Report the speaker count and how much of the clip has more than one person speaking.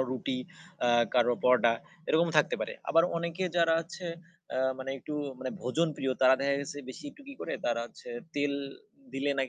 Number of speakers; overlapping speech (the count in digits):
1, no overlap